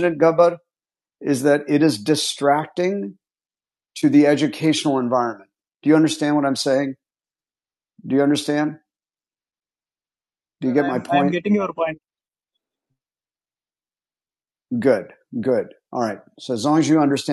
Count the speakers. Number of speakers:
2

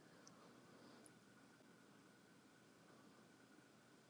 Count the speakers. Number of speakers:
0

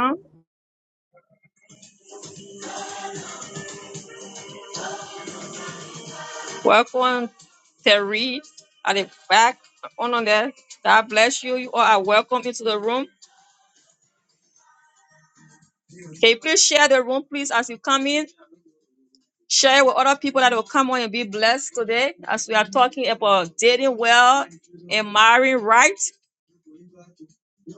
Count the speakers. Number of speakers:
1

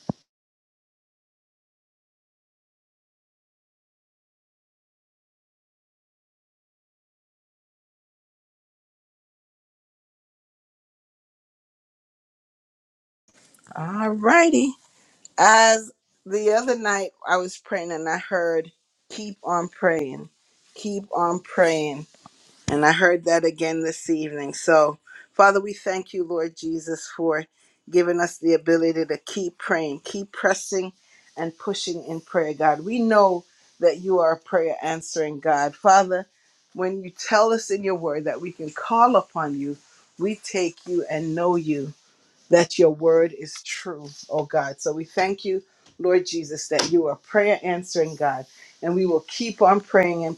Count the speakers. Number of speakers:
1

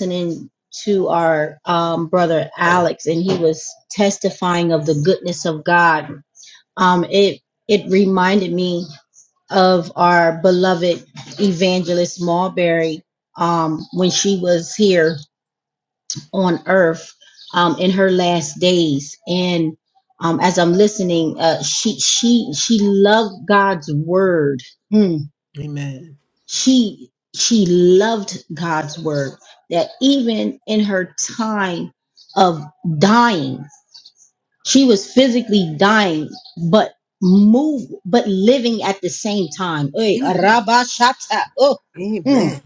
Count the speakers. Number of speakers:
2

